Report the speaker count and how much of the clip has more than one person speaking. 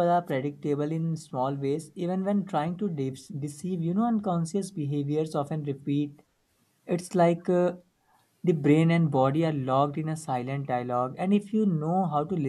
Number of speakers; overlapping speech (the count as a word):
one, no overlap